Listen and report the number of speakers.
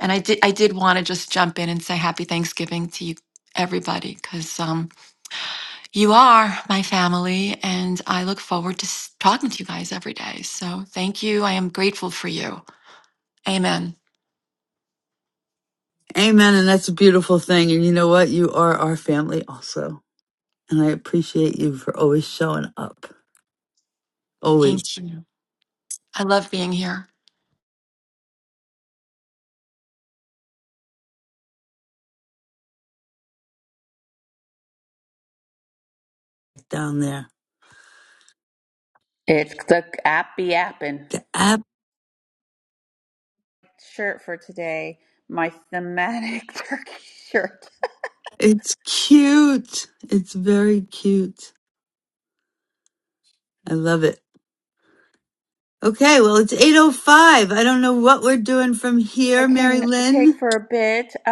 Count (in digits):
3